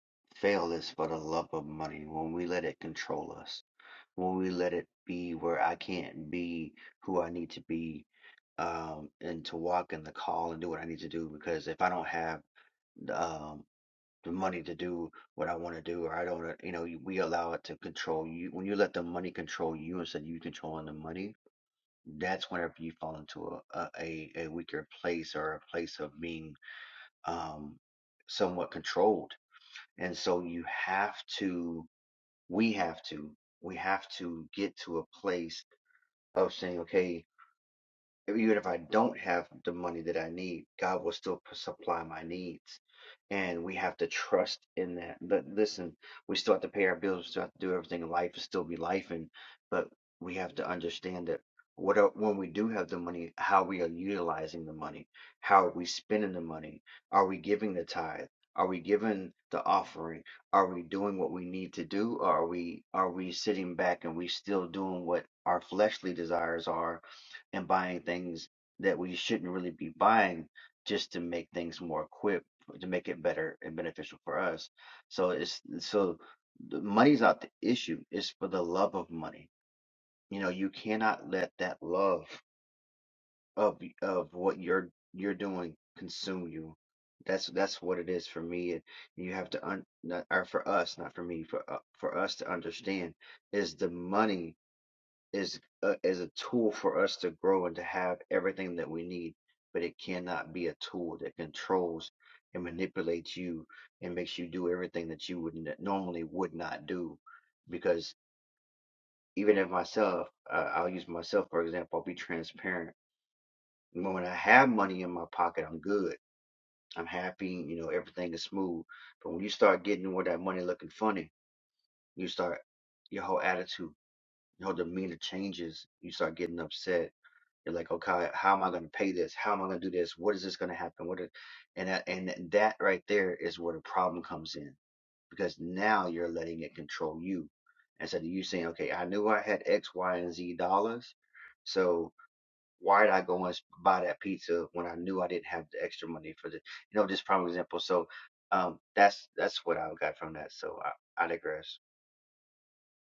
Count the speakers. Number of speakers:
1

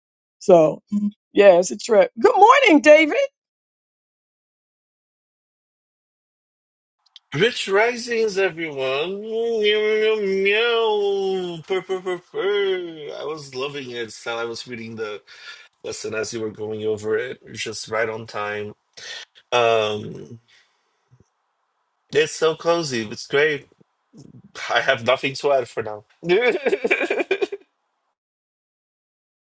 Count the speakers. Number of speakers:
2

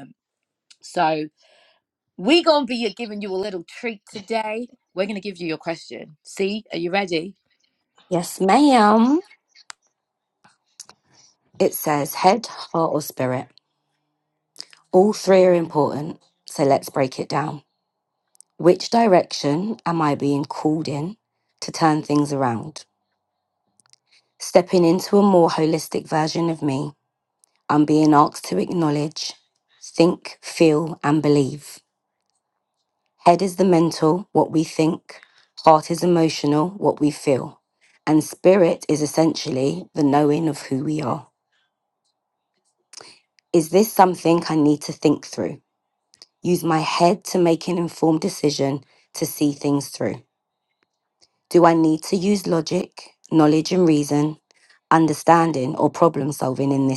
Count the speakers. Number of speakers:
2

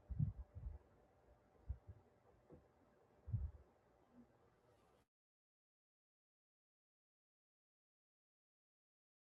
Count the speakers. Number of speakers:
0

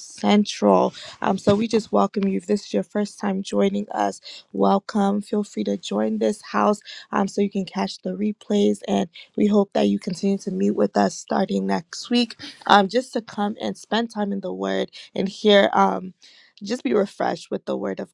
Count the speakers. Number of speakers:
1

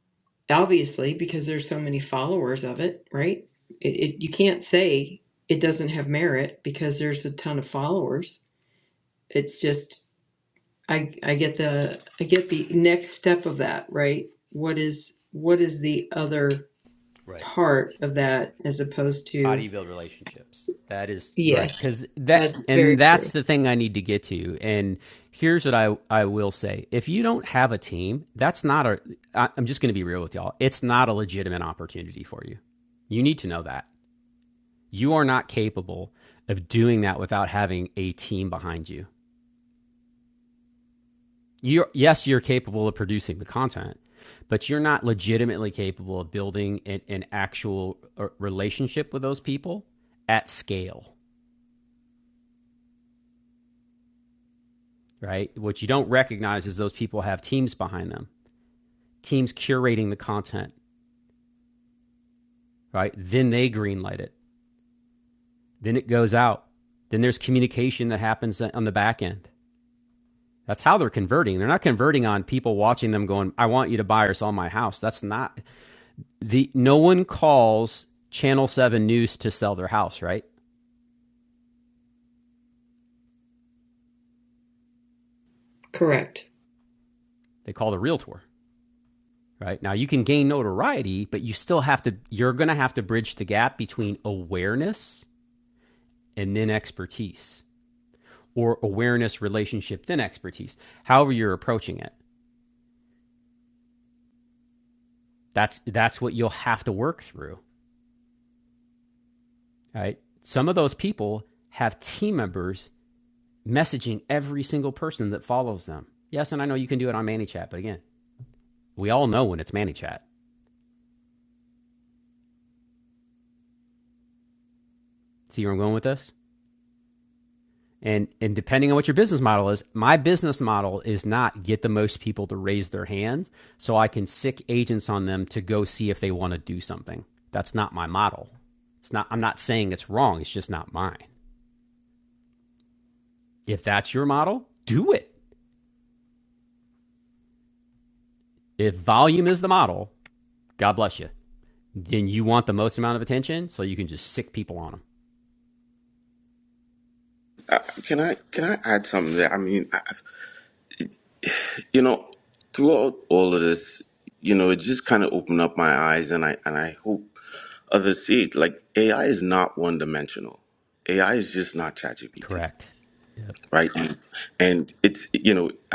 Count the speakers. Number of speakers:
3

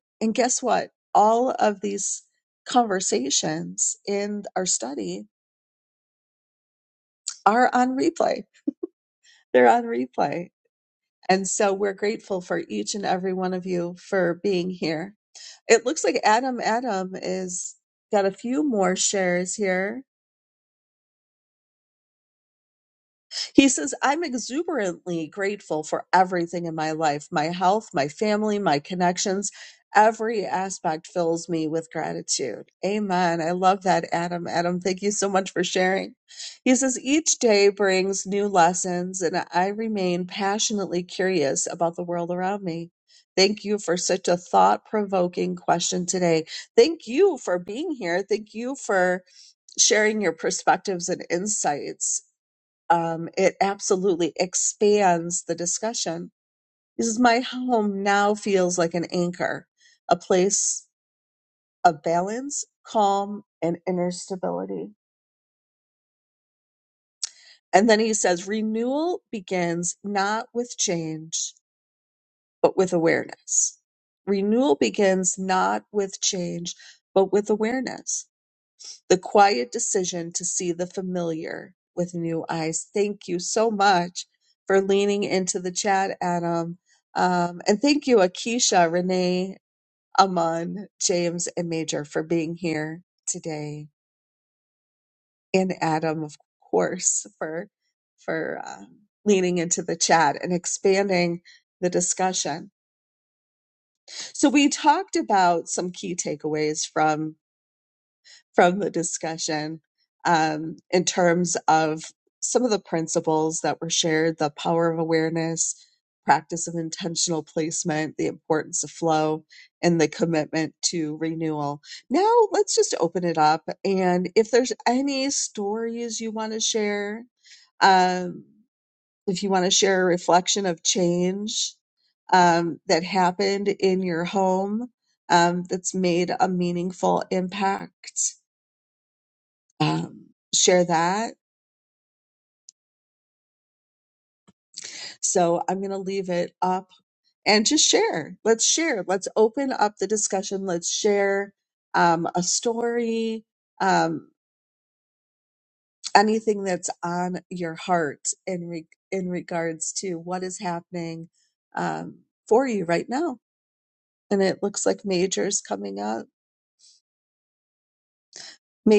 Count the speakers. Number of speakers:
1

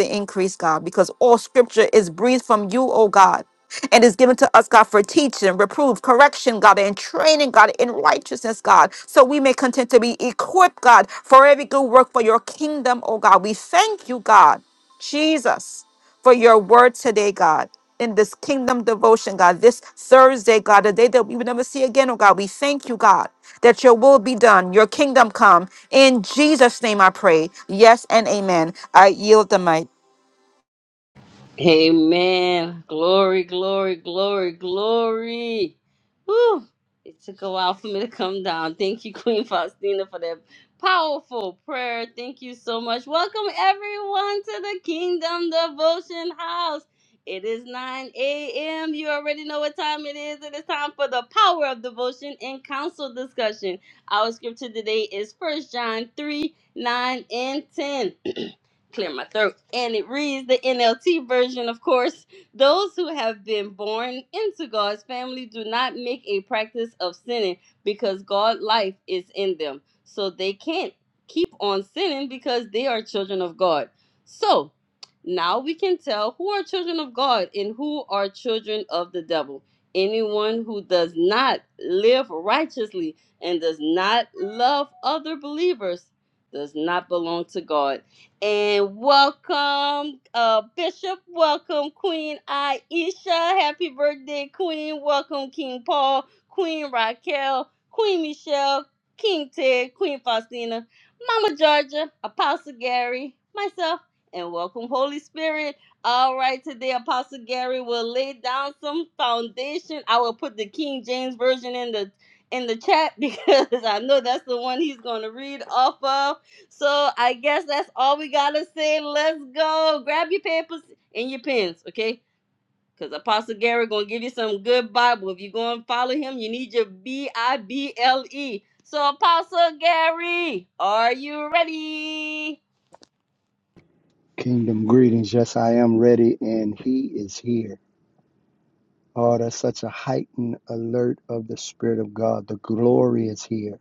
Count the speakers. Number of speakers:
3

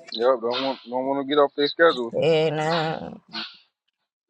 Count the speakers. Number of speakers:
2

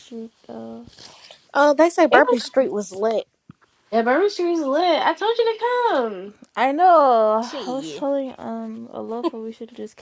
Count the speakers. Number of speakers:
3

